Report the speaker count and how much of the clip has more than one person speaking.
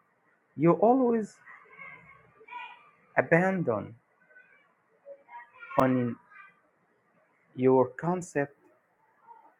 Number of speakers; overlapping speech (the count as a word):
one, no overlap